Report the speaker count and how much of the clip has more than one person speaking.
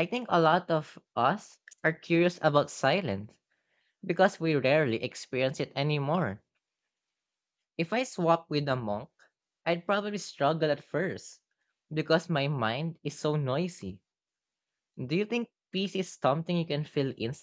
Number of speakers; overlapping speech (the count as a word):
one, no overlap